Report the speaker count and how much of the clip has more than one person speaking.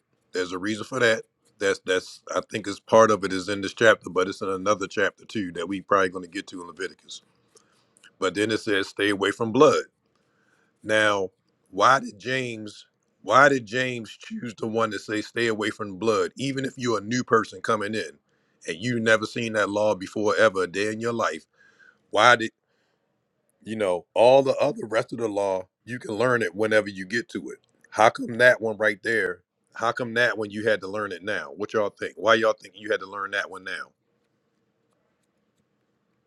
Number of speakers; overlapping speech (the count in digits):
1, no overlap